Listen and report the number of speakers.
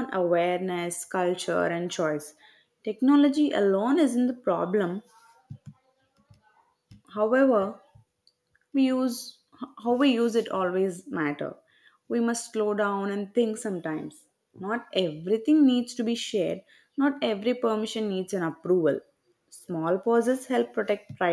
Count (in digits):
1